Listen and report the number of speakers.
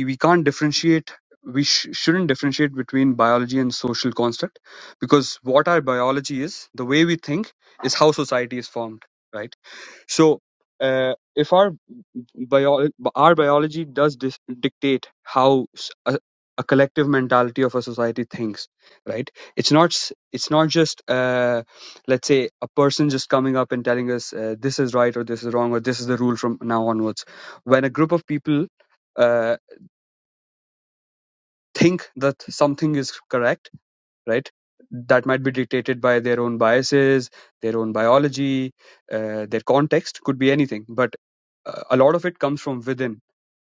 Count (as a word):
one